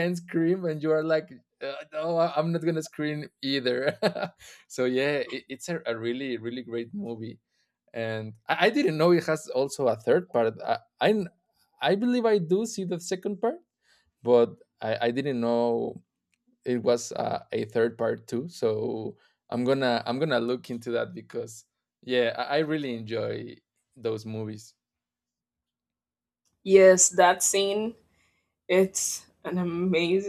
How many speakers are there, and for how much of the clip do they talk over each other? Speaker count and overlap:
two, no overlap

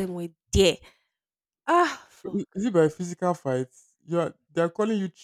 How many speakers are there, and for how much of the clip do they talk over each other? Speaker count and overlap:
two, about 2%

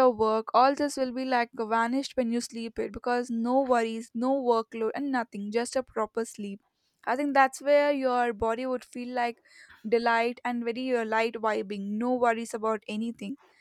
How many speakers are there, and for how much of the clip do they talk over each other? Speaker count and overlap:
one, no overlap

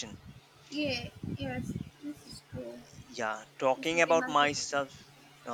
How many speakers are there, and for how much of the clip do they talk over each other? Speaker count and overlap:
two, about 15%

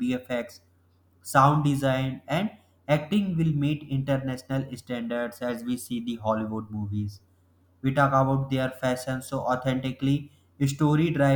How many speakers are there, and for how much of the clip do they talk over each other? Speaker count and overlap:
one, no overlap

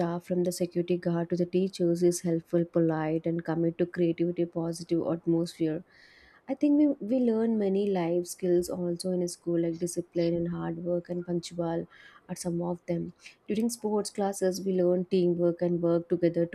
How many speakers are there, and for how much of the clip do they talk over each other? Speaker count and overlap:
one, no overlap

